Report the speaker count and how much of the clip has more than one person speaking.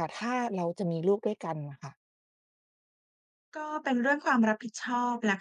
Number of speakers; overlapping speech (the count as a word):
two, no overlap